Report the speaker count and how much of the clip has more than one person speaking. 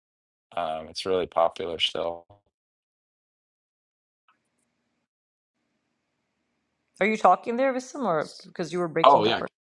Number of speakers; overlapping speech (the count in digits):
2, about 4%